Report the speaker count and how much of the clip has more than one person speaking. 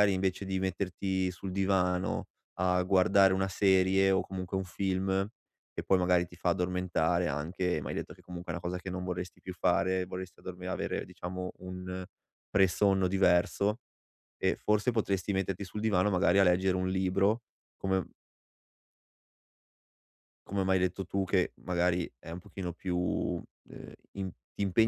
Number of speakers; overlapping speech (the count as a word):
one, no overlap